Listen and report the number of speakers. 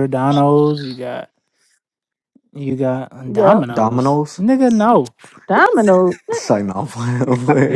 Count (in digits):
3